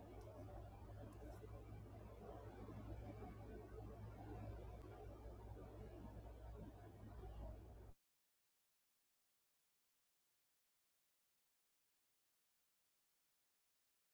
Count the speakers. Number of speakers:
0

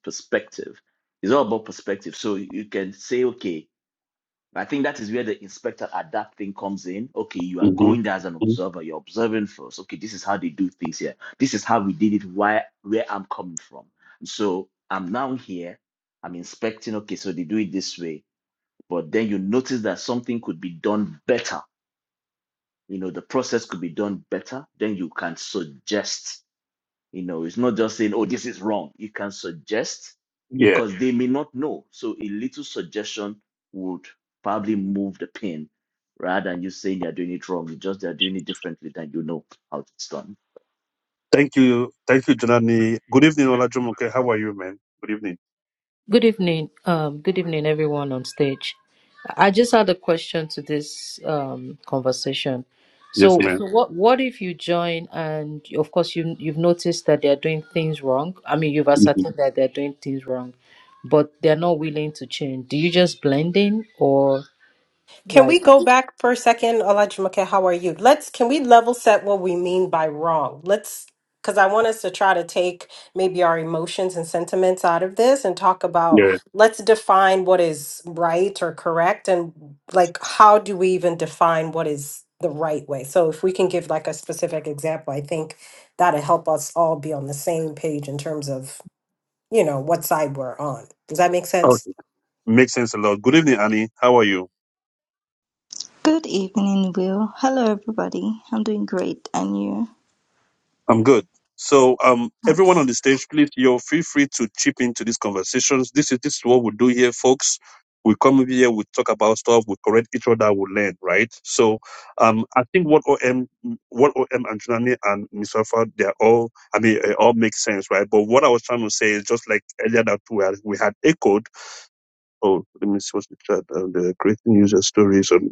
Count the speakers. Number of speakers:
5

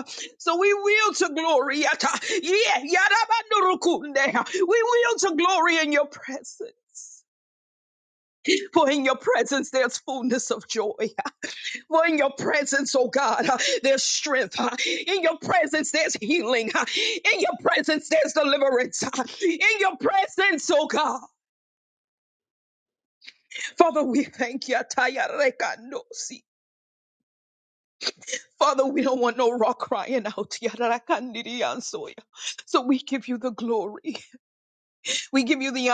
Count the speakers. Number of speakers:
1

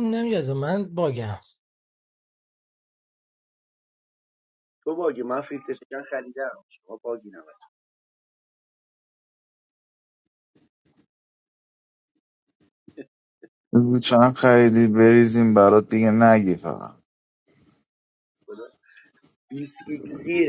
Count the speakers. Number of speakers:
3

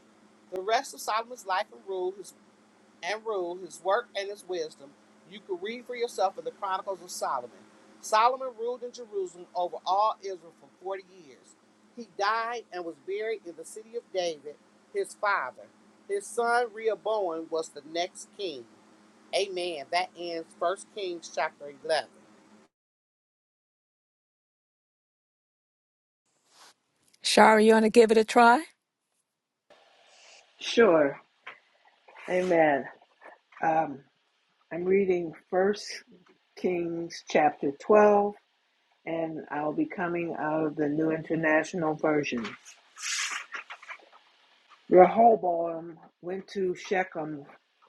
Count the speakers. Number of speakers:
3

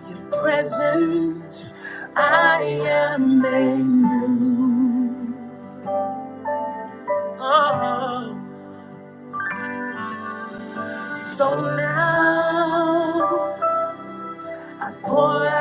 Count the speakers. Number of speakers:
1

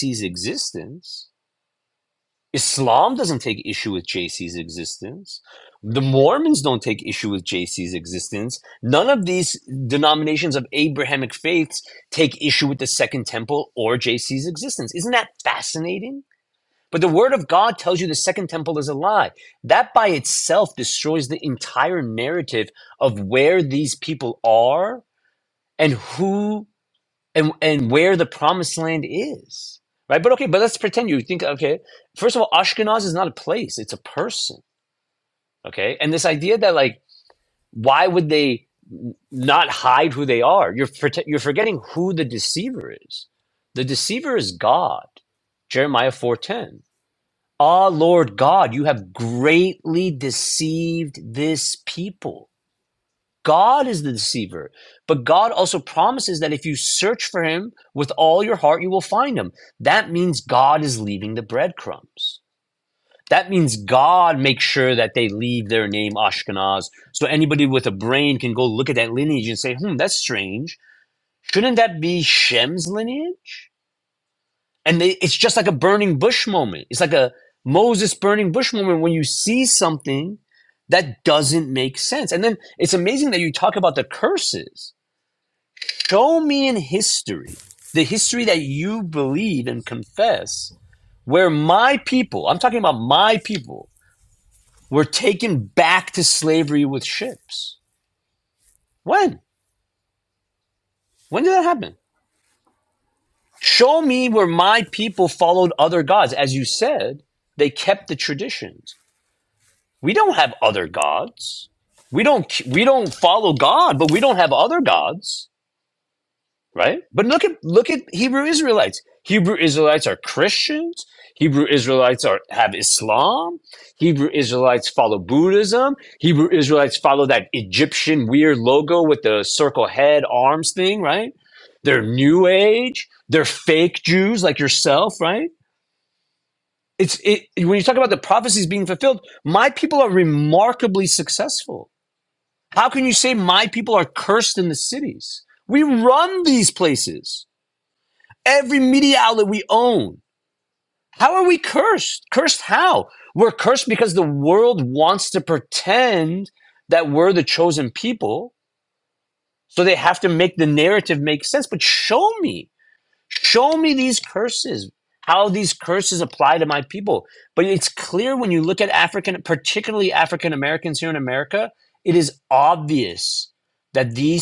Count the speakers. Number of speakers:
1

